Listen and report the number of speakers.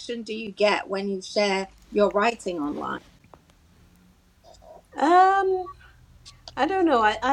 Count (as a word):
two